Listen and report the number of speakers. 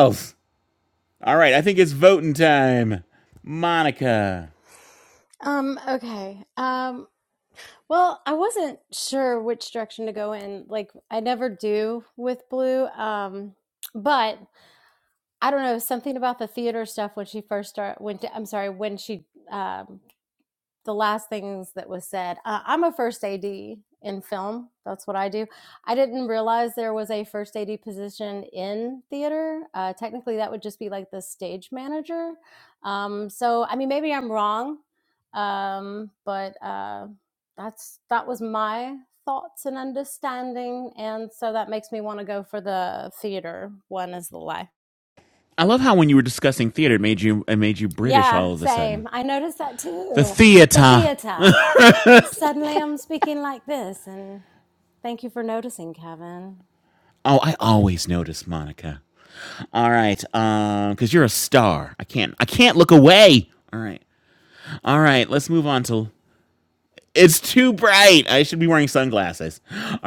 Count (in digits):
2